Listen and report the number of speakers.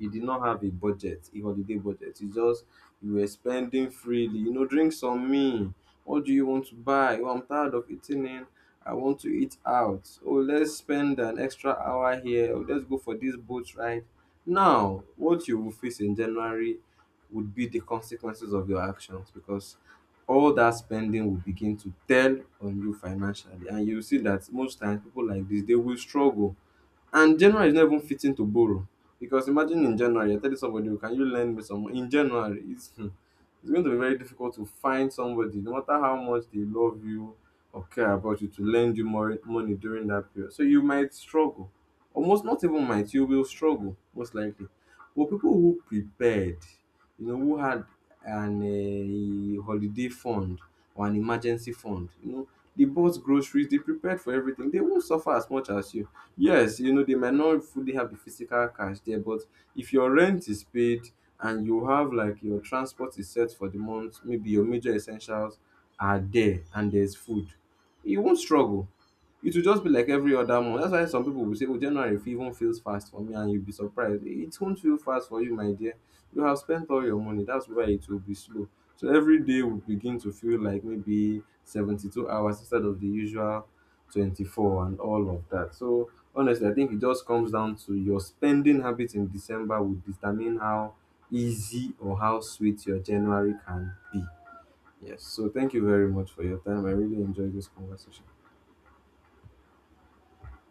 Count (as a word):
one